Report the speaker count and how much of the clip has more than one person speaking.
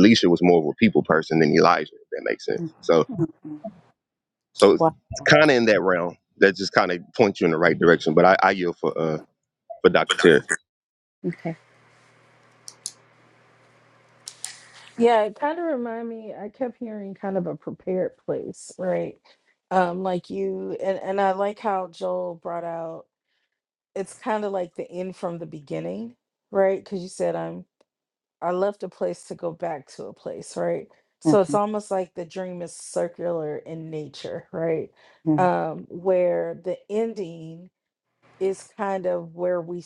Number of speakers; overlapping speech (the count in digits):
3, about 1%